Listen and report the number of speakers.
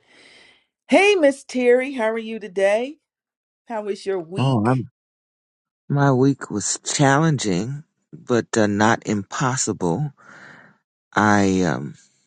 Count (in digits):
2